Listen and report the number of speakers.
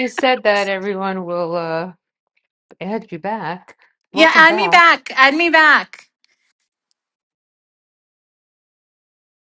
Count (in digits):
2